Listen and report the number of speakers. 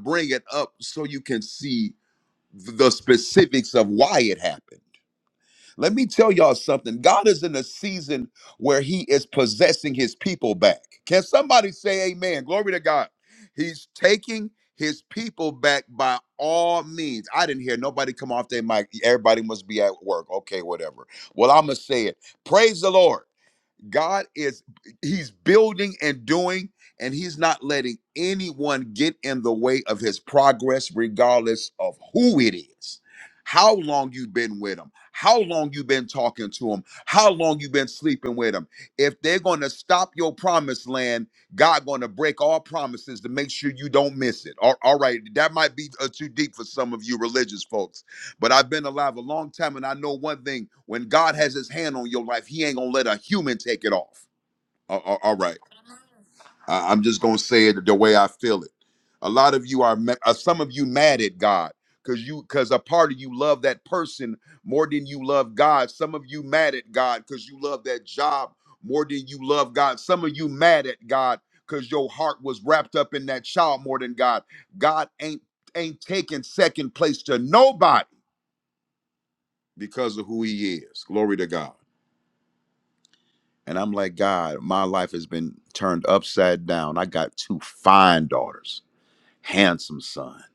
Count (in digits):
1